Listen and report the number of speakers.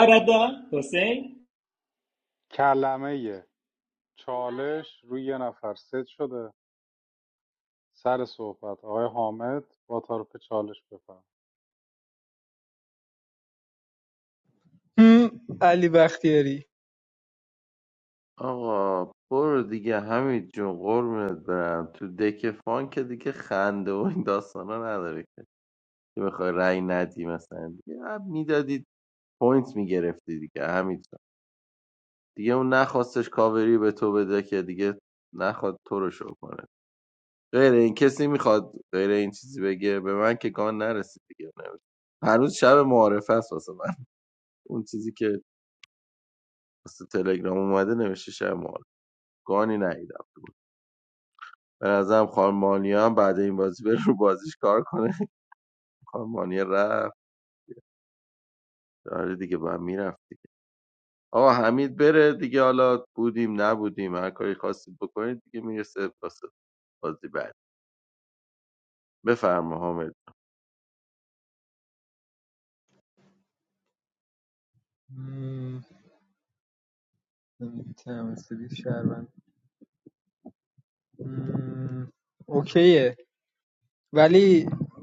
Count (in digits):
4